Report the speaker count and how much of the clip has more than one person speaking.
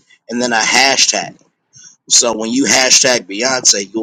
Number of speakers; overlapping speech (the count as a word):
one, no overlap